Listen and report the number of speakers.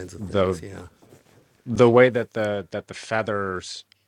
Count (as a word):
one